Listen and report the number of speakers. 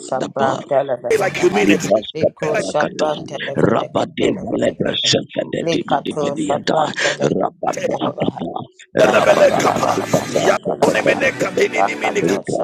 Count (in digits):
3